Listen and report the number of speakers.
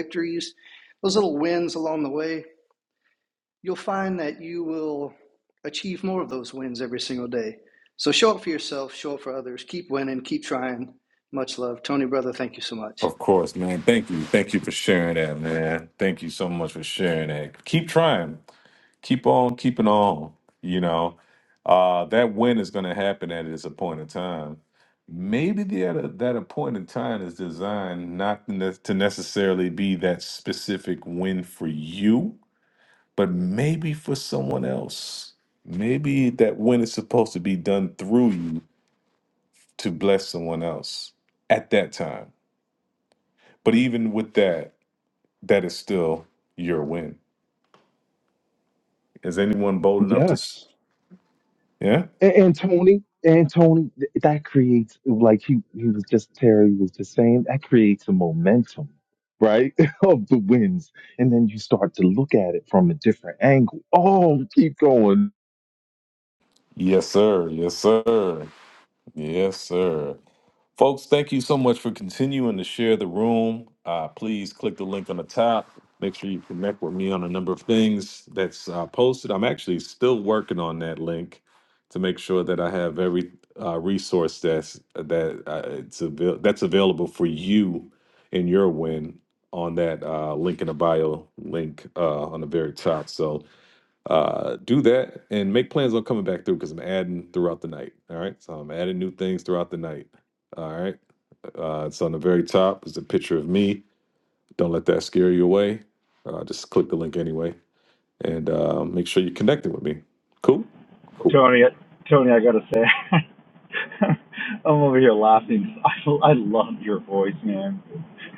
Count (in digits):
4